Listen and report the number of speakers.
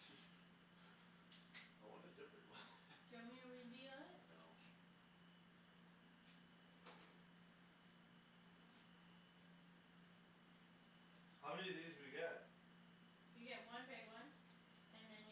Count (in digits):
3